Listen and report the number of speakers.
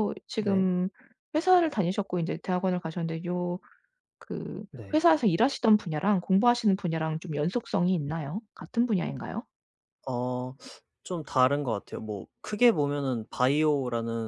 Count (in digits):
2